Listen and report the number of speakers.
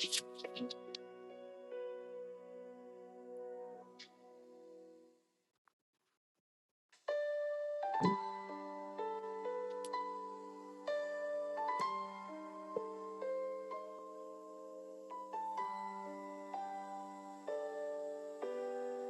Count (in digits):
0